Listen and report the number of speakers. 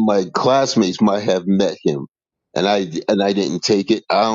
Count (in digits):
1